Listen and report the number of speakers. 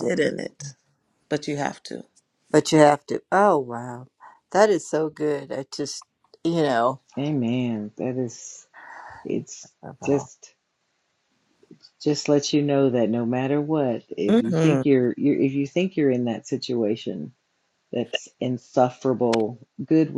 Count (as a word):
three